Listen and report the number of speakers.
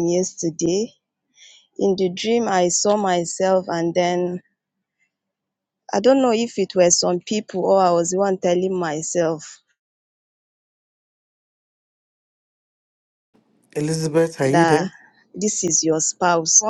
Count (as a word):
two